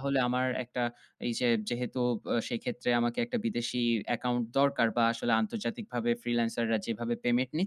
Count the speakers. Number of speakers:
one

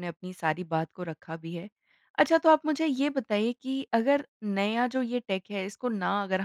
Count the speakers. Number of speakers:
one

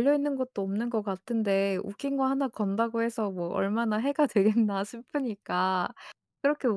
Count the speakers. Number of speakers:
one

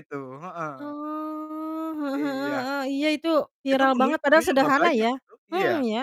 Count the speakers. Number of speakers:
two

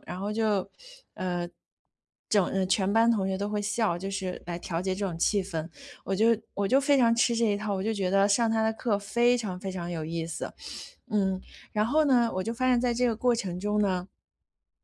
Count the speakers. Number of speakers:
one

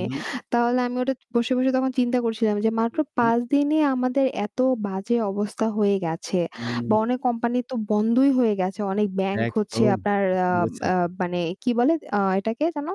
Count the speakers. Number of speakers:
two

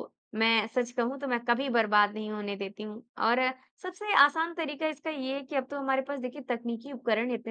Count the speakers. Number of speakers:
one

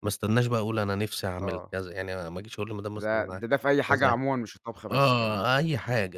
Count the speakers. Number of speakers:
two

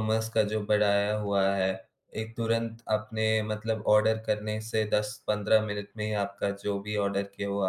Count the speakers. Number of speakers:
one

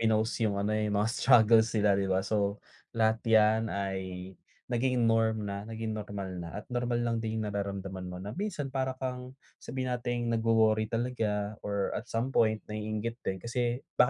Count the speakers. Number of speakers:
one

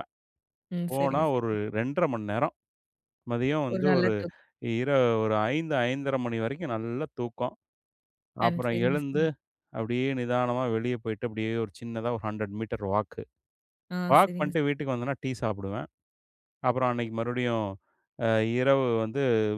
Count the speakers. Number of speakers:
two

